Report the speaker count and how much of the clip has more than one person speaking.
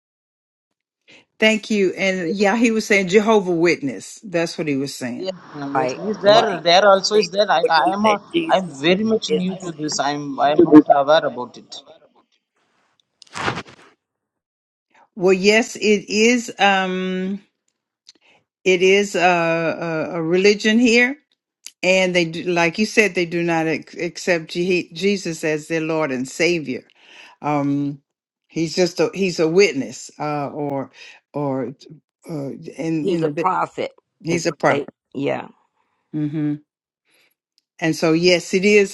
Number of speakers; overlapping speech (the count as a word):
three, about 10%